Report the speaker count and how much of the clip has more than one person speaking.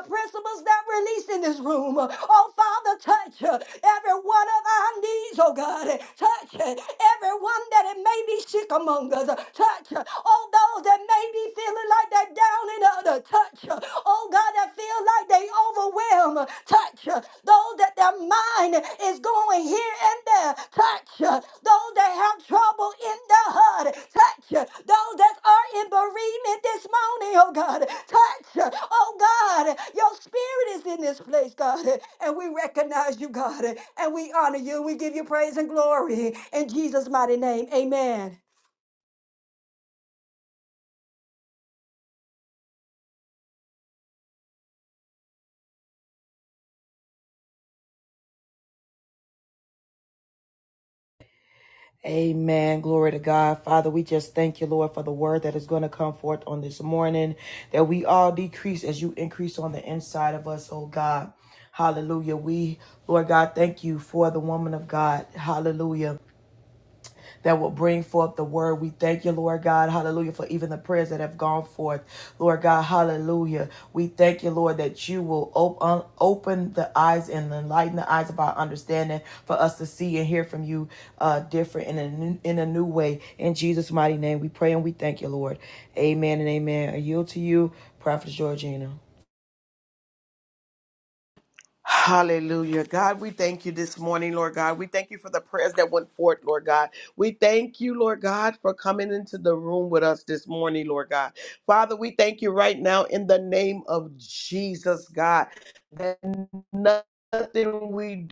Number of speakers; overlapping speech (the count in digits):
3, no overlap